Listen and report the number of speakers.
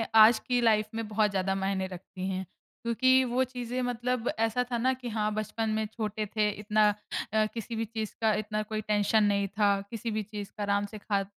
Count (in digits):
1